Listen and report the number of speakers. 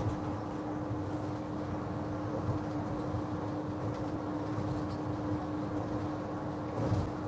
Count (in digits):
0